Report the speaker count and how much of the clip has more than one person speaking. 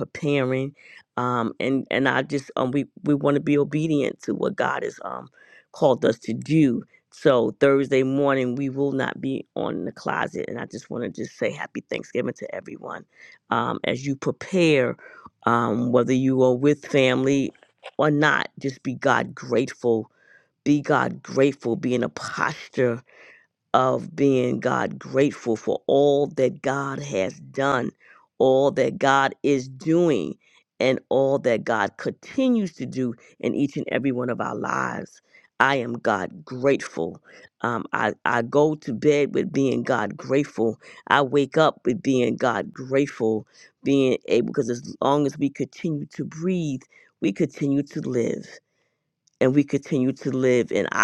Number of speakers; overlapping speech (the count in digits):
1, no overlap